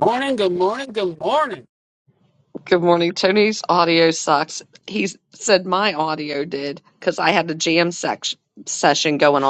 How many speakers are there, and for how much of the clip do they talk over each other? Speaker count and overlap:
2, no overlap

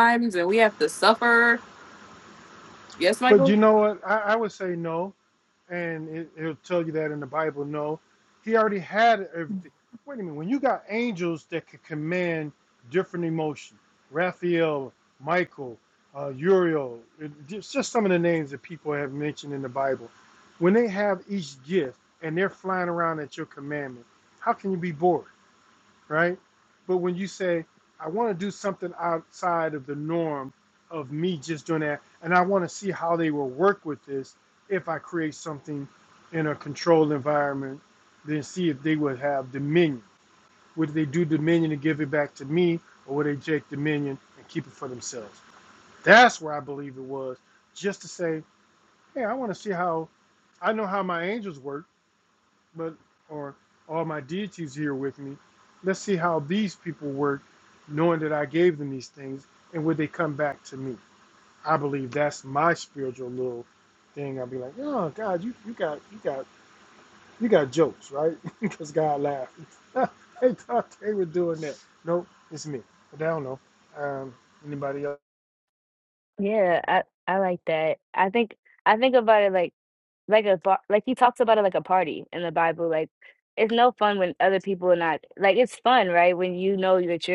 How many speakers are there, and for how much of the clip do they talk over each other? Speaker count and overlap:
3, under 1%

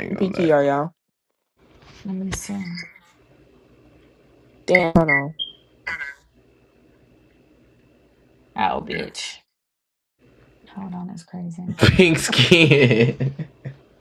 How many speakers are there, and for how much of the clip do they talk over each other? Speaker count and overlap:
3, about 3%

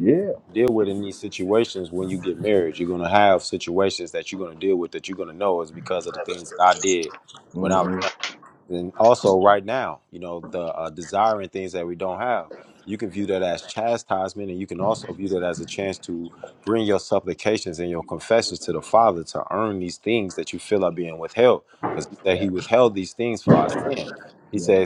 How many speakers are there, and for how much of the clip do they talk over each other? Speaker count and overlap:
2, about 3%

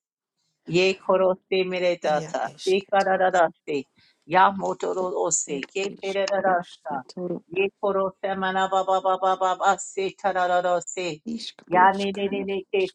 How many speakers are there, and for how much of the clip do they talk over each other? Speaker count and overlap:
2, about 24%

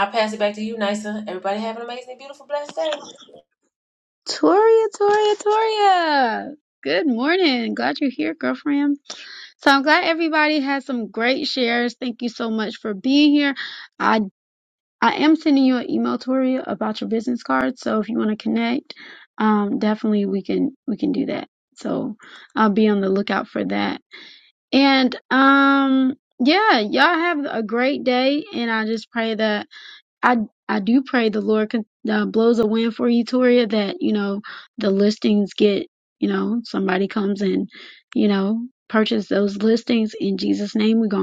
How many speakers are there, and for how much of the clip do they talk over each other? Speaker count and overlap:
2, no overlap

